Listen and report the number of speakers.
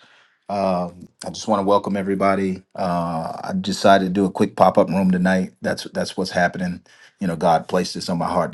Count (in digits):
1